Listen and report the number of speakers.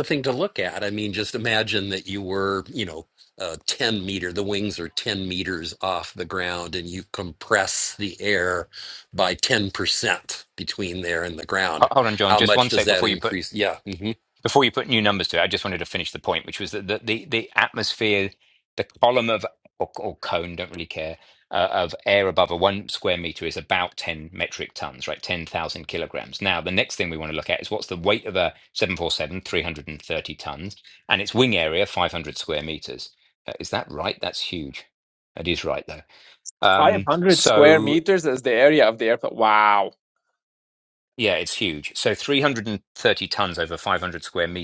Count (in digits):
3